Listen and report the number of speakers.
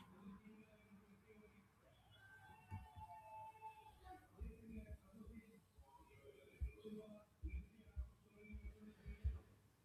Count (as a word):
zero